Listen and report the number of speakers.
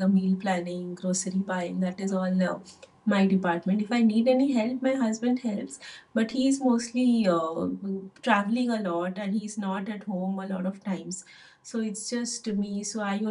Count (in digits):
1